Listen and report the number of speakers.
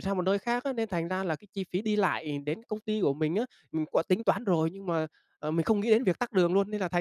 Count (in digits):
1